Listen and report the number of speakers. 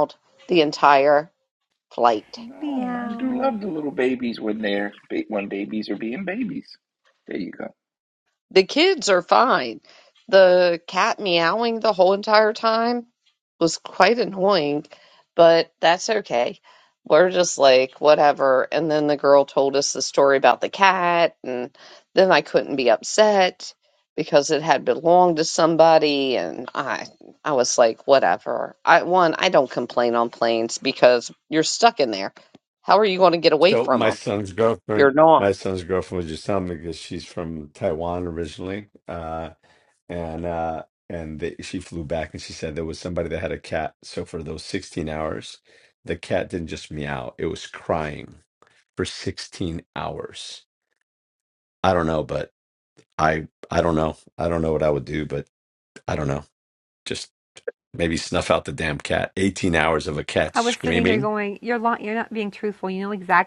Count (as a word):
four